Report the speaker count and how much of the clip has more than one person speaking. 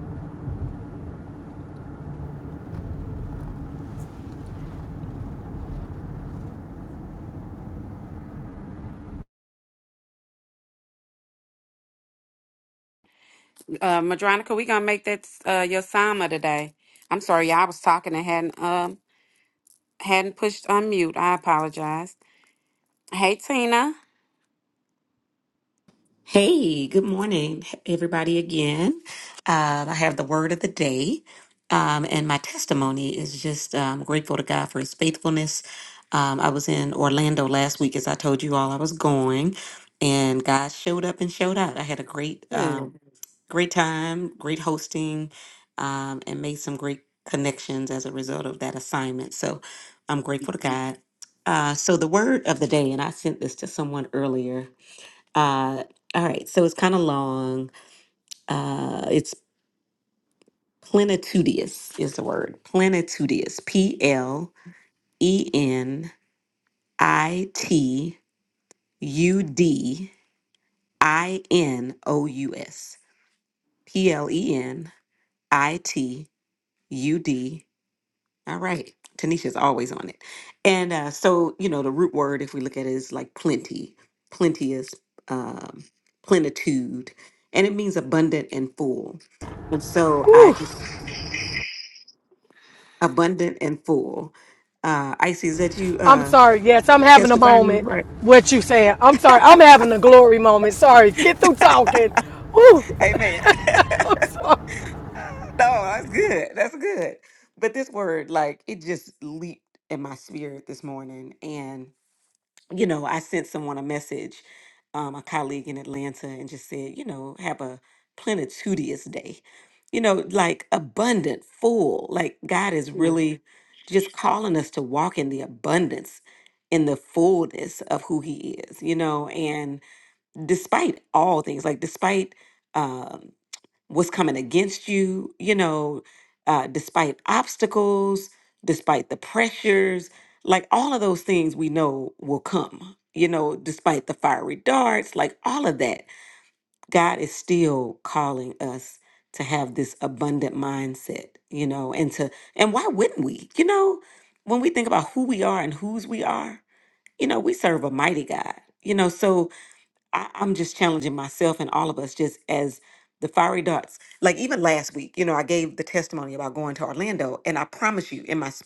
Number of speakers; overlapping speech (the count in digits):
3, about 1%